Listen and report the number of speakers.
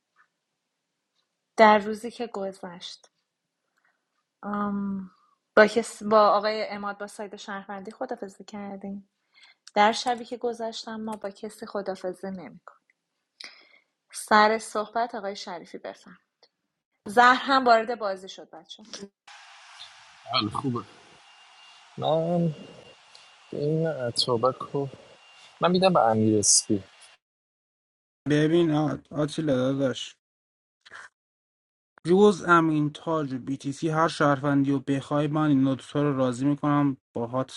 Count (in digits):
3